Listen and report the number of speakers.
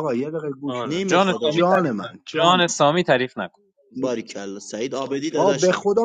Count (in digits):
3